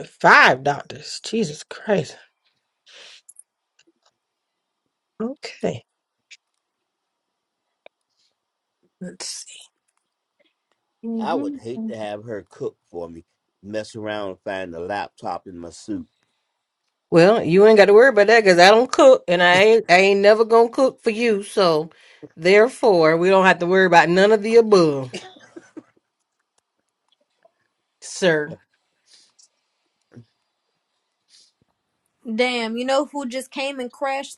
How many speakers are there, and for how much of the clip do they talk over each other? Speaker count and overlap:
3, about 1%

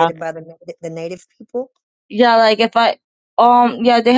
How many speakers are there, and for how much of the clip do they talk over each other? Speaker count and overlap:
2, about 1%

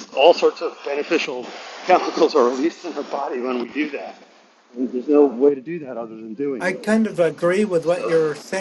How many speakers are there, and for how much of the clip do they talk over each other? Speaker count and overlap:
2, about 10%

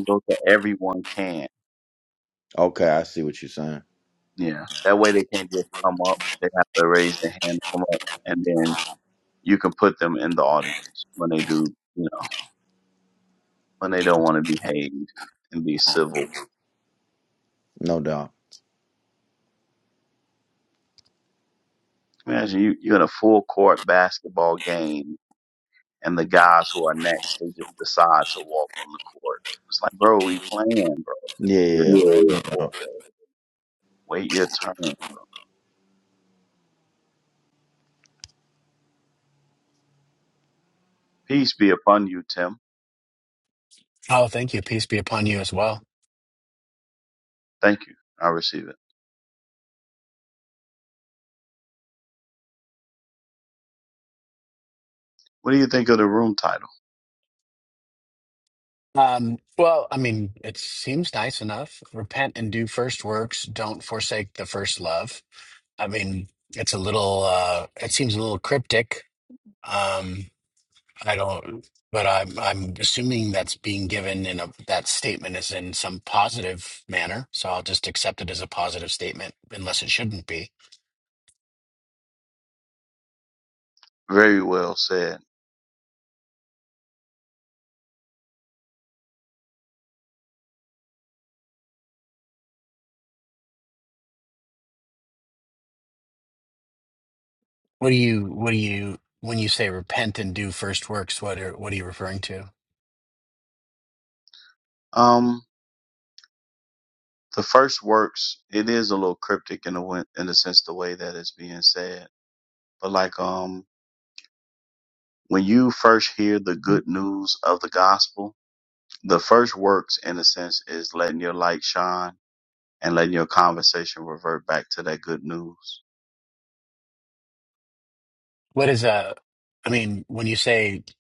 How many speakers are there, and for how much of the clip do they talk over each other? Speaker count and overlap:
3, under 1%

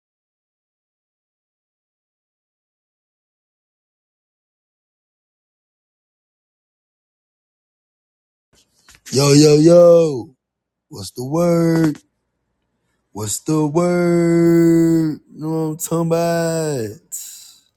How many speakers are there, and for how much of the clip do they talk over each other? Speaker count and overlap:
1, no overlap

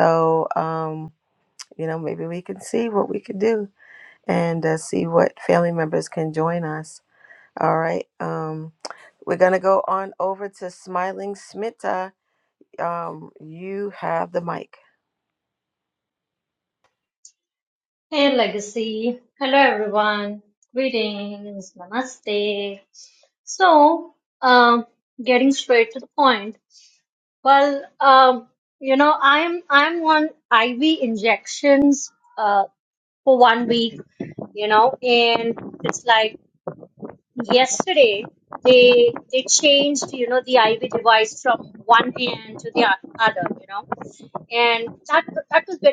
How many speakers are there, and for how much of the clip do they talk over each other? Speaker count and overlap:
2, no overlap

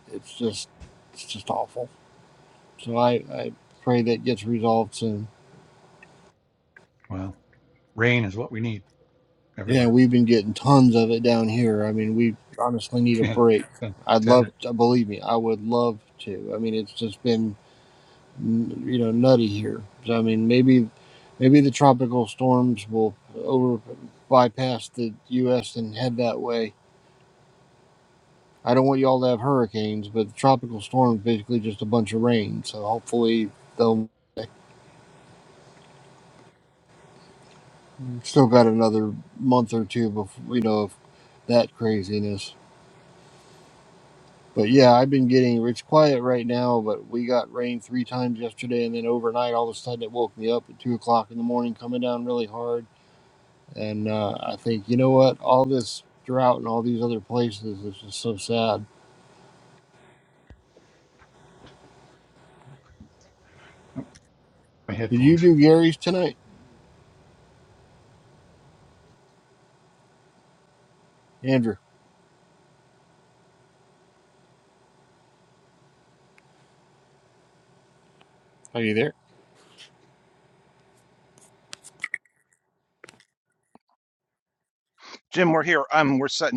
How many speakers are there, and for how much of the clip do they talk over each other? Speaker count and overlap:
3, about 1%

